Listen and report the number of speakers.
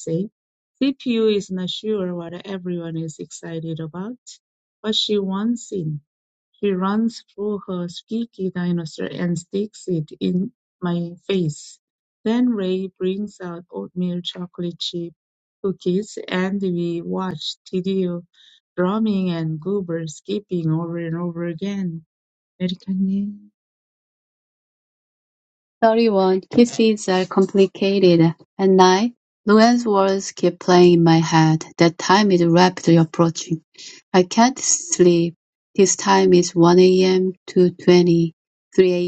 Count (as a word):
two